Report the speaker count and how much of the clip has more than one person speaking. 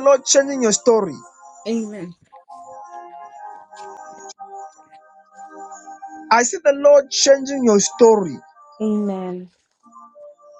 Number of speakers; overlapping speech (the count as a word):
two, no overlap